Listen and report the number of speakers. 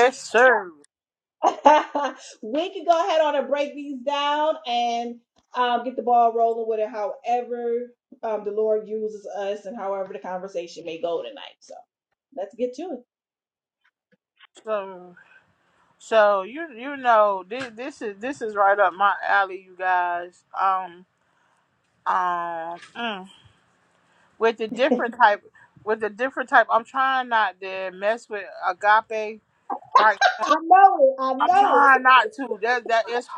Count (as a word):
two